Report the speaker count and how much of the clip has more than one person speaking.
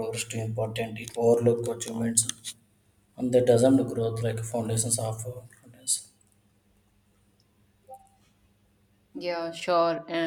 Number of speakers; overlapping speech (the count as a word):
two, no overlap